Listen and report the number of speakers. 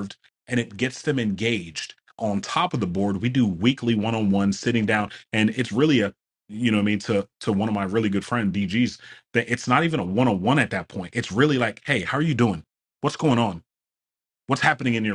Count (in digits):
1